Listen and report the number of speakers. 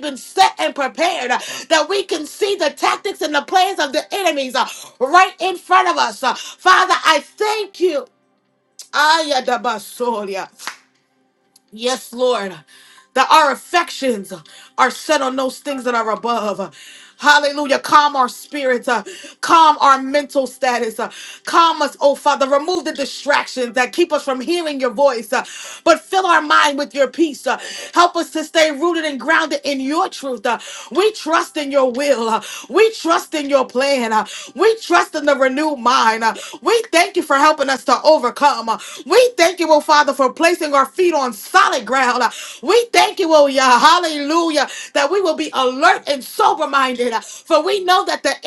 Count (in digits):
1